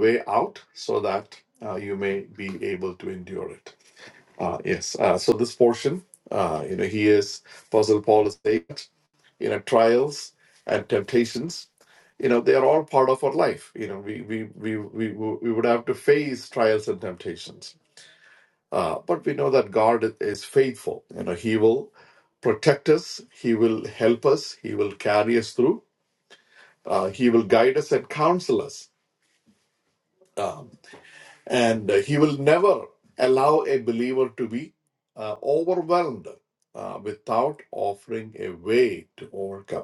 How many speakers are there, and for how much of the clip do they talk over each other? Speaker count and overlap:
1, no overlap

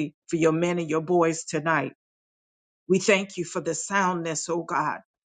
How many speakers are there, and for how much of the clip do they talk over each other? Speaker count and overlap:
1, no overlap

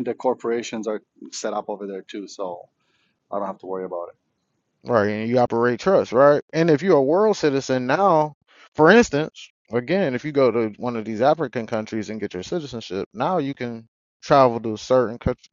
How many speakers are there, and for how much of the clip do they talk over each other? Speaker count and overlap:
2, no overlap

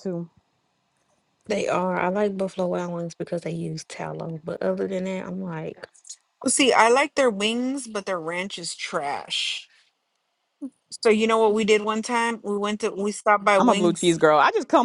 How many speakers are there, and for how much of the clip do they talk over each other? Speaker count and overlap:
3, about 3%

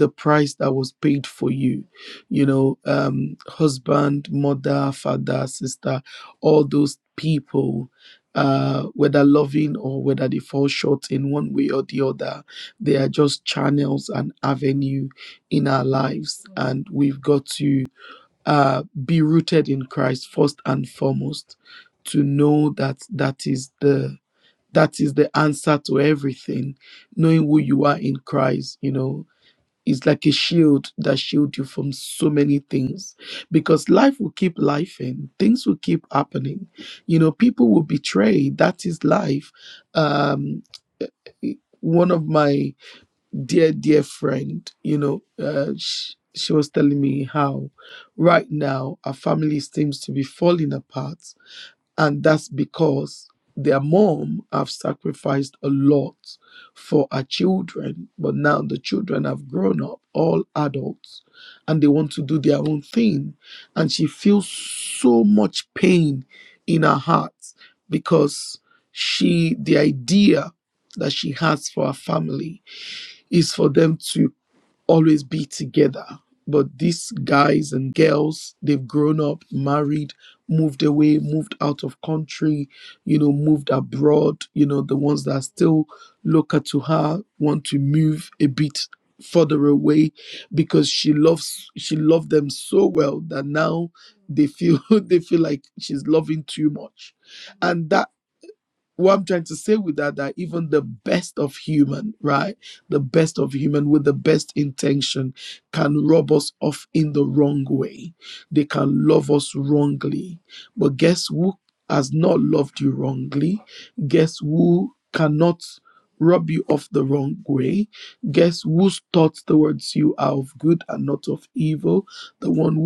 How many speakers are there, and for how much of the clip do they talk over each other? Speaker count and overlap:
1, no overlap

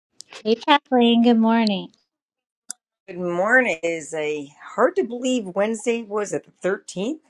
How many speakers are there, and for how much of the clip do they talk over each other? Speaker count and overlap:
2, no overlap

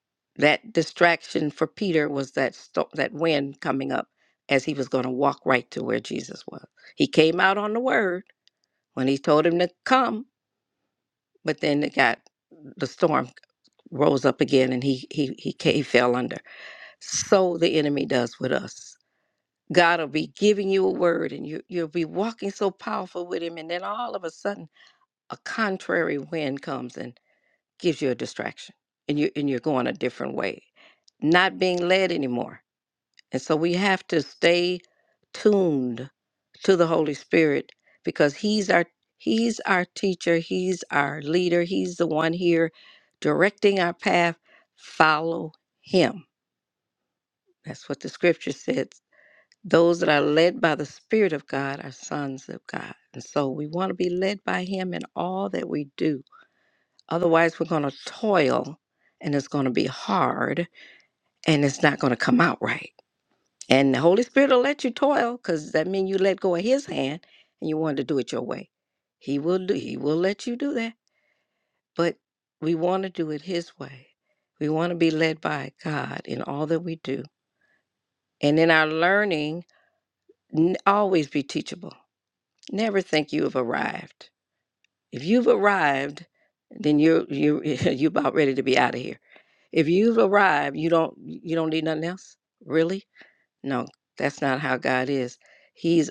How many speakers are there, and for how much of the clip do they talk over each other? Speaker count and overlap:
1, no overlap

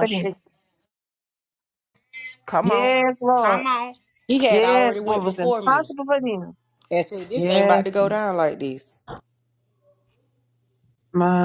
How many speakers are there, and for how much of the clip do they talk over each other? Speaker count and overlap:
3, about 26%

